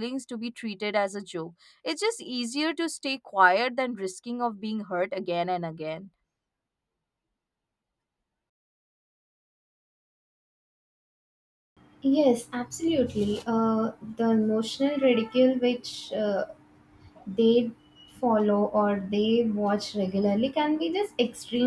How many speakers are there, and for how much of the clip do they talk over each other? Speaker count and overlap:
2, no overlap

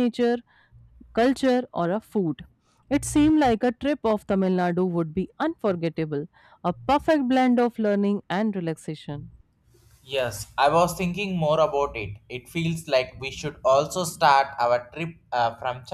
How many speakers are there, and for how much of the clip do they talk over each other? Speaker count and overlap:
2, no overlap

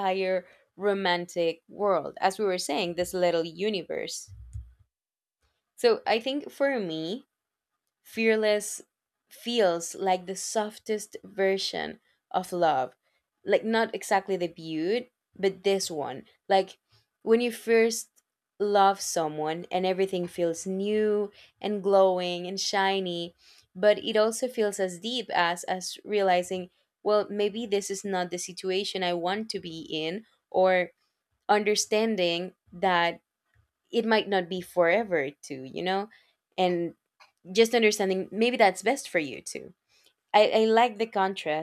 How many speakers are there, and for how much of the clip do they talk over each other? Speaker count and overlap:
1, no overlap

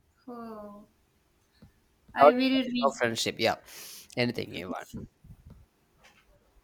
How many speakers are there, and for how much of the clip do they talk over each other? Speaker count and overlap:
2, about 8%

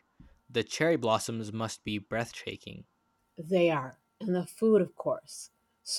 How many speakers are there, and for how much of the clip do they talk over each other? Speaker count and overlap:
2, no overlap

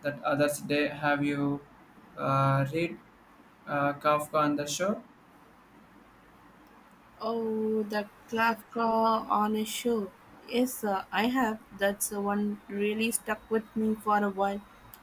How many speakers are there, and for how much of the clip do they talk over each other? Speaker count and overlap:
2, no overlap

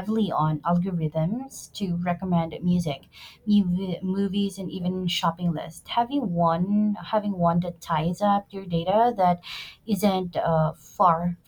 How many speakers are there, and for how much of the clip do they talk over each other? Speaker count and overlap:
1, no overlap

